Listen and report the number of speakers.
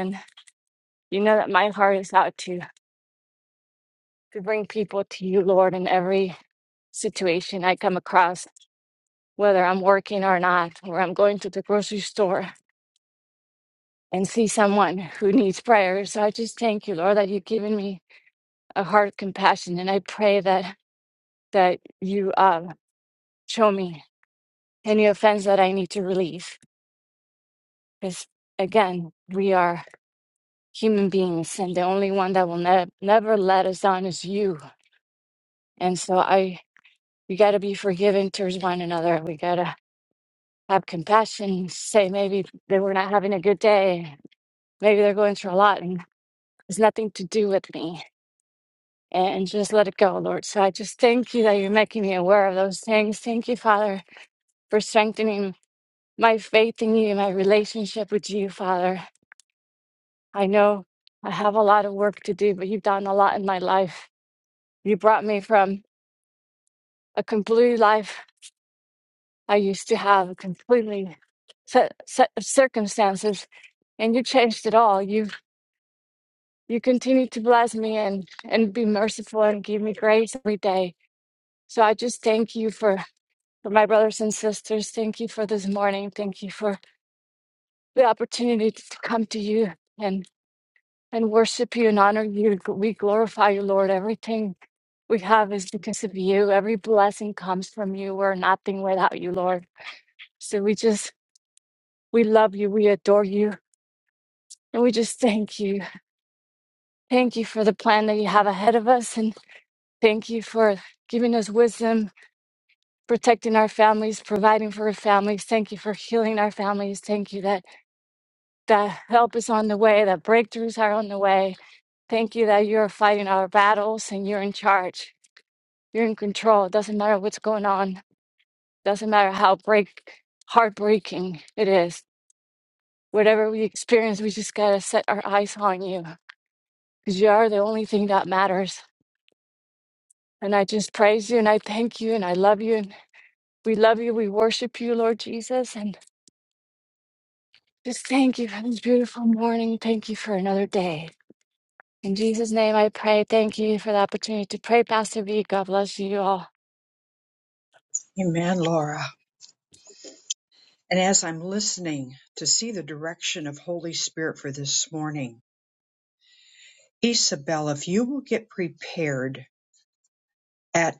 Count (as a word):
two